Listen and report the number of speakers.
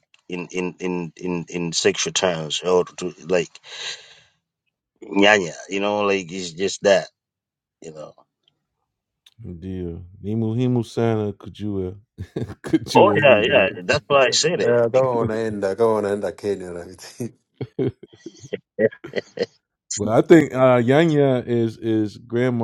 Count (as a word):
three